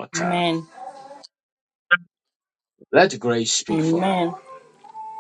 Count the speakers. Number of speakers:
two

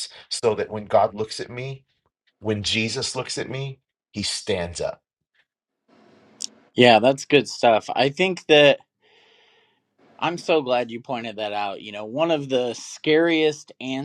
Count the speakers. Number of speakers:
two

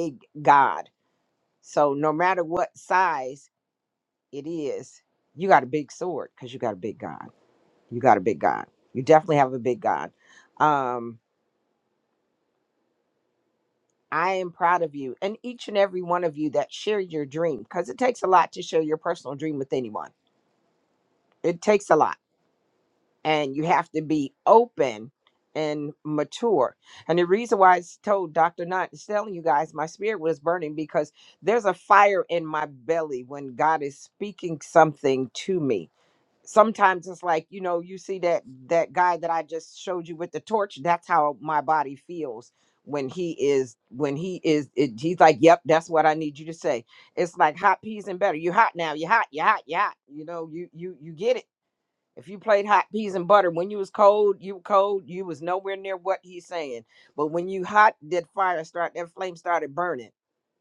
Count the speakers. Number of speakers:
one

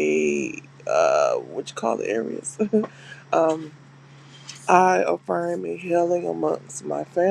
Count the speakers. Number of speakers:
one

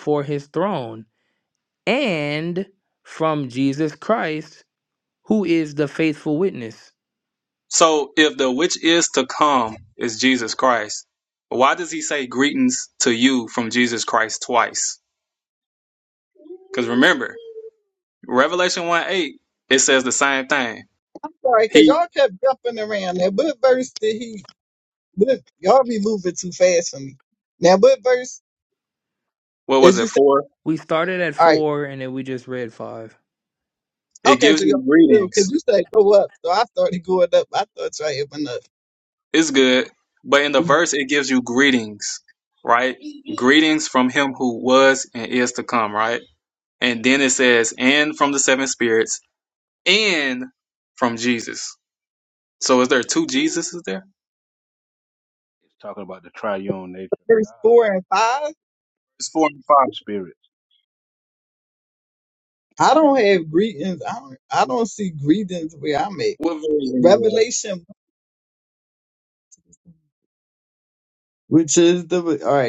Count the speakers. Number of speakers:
four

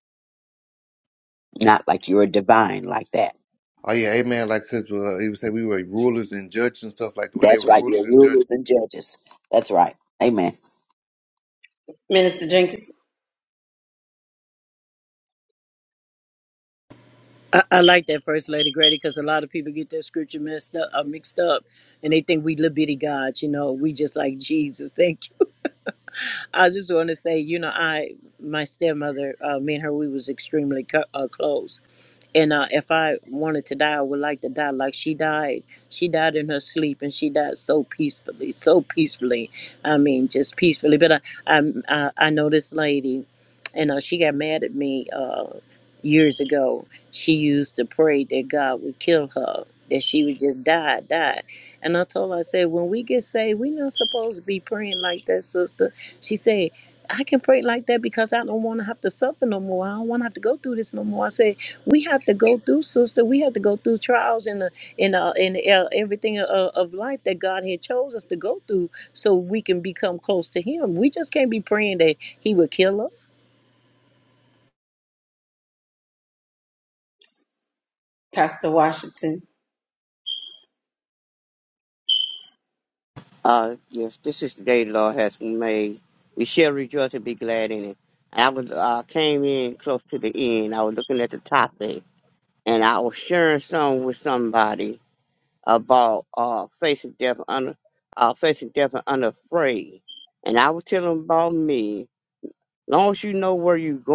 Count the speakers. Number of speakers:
five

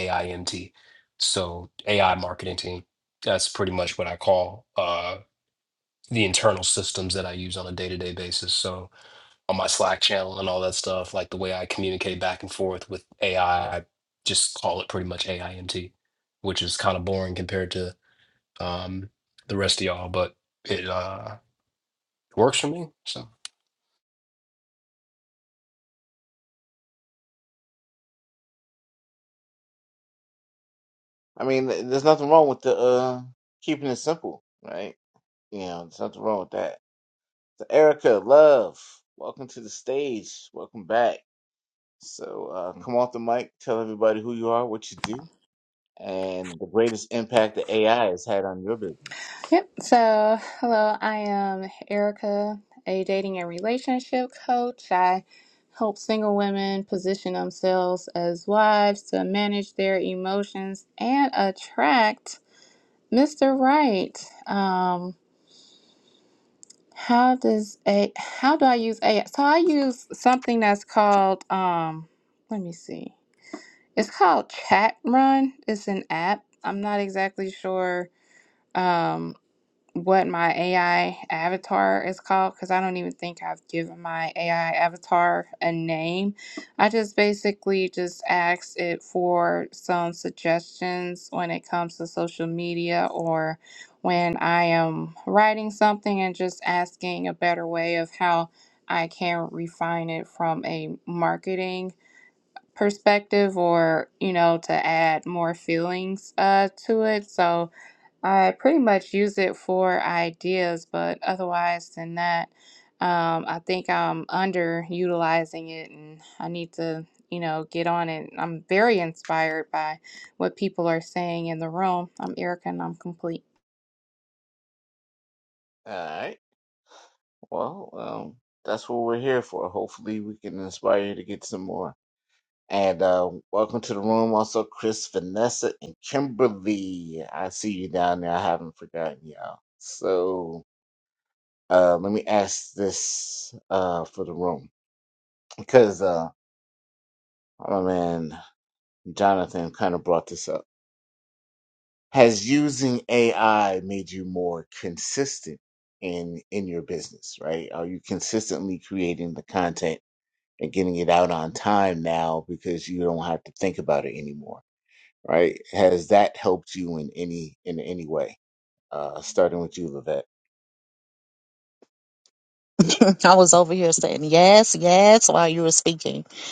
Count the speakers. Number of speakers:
four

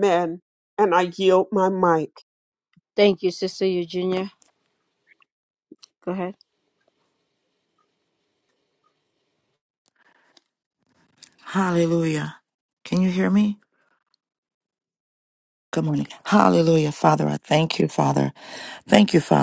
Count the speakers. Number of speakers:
three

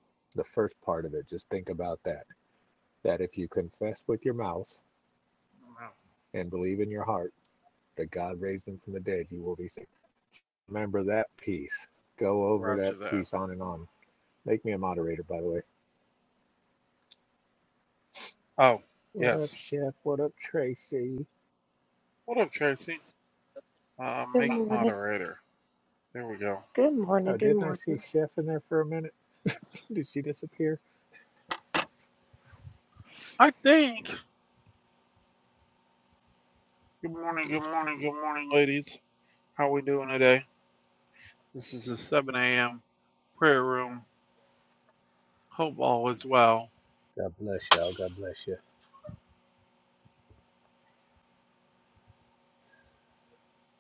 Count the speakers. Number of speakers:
three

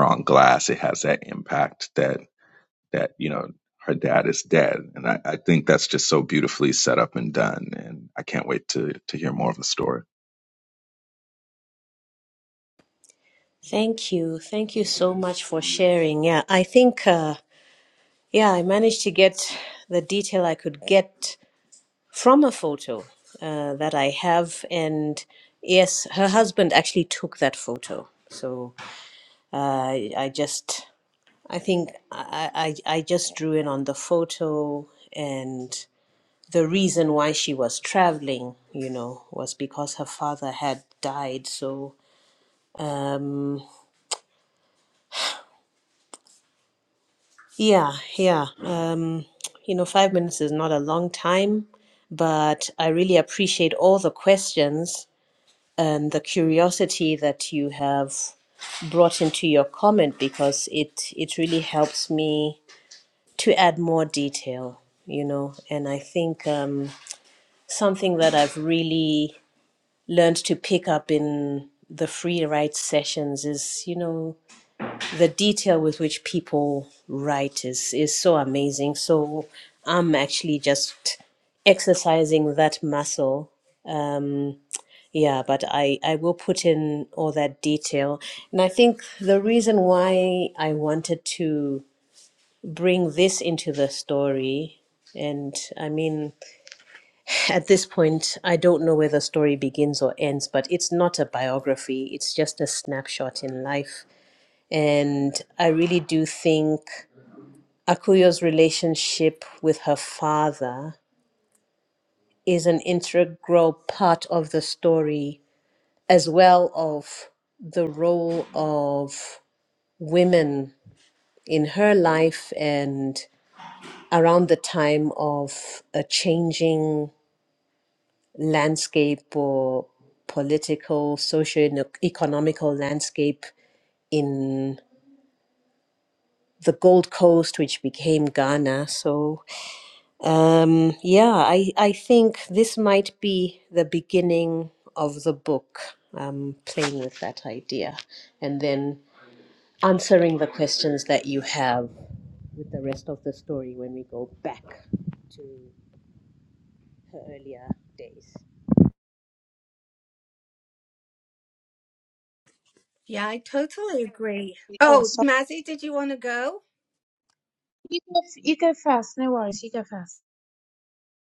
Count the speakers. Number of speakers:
four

